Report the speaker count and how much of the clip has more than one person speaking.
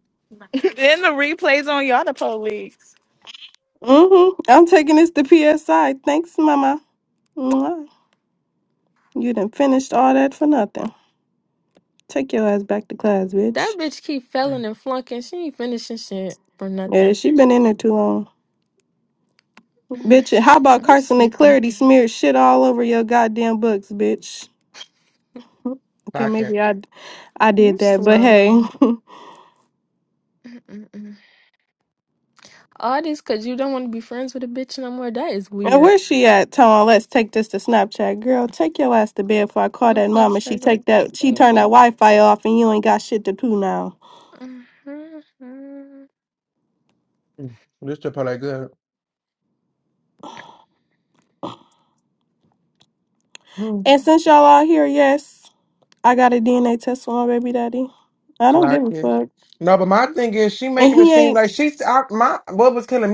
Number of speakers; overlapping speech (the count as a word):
four, about 9%